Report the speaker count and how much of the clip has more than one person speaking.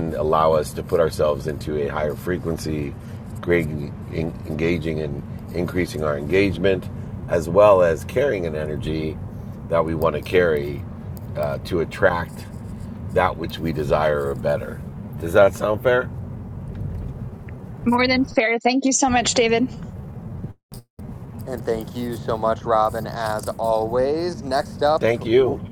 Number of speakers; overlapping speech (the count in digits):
3, about 2%